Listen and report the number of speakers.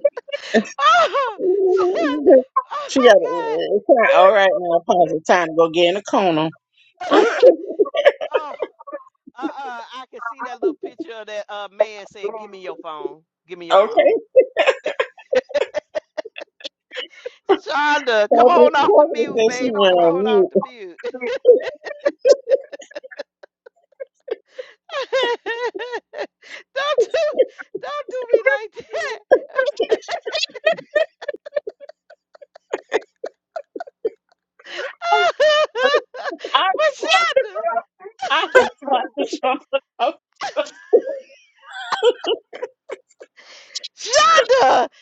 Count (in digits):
3